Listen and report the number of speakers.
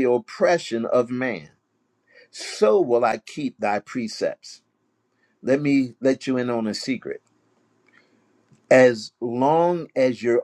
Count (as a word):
one